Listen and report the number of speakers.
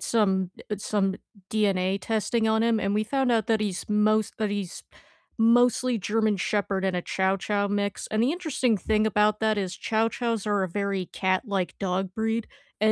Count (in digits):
1